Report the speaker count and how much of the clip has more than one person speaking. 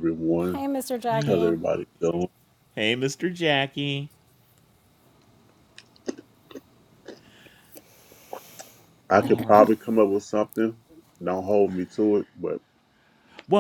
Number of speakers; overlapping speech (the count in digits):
3, about 7%